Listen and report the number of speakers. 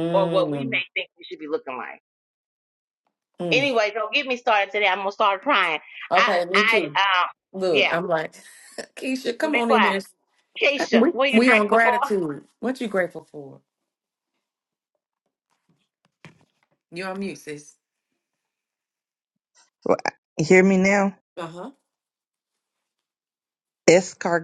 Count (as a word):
three